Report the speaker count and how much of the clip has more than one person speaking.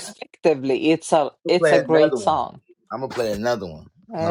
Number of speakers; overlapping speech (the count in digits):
2, about 23%